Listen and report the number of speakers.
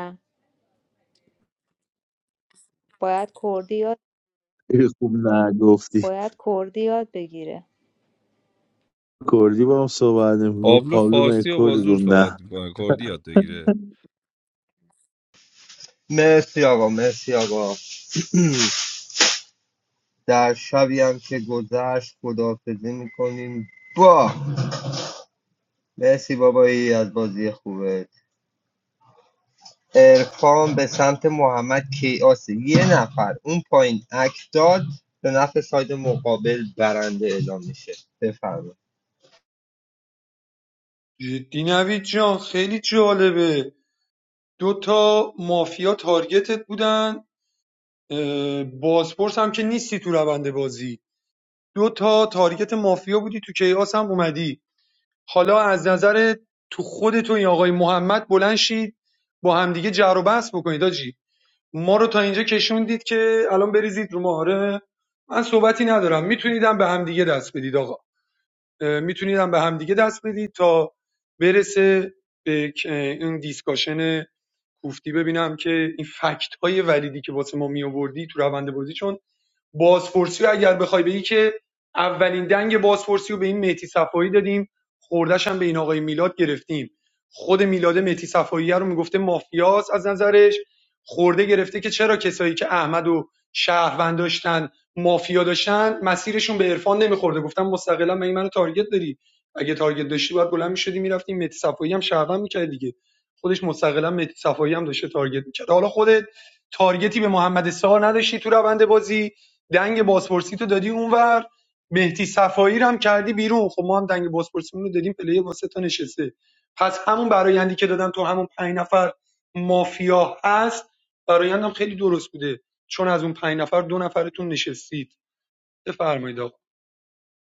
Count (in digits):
5